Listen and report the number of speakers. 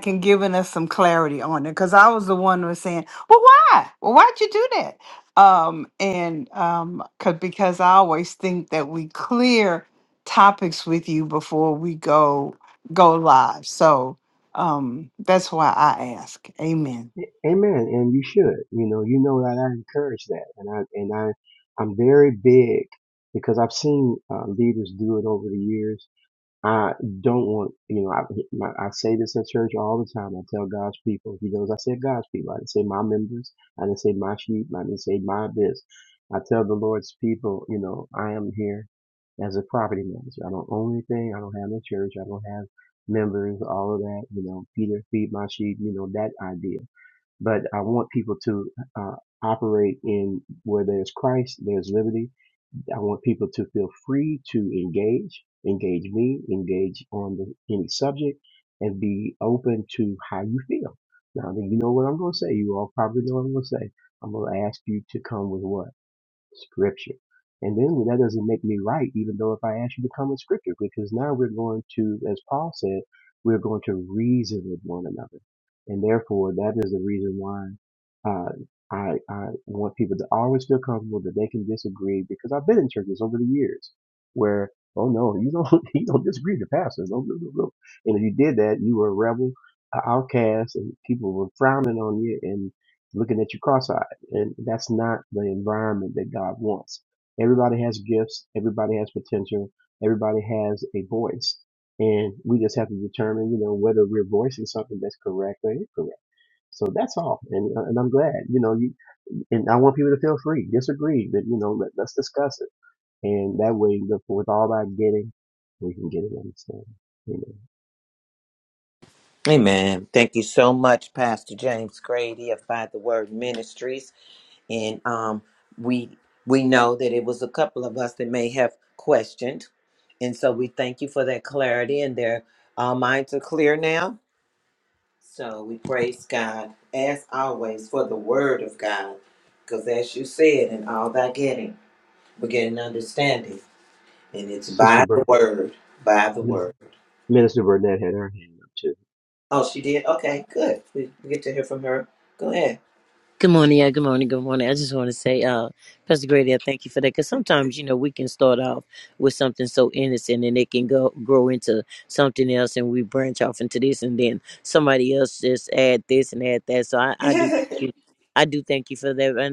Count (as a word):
four